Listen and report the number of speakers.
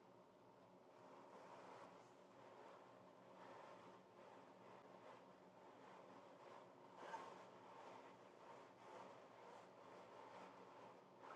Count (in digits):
0